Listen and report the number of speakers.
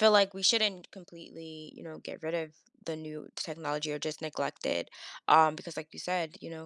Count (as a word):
one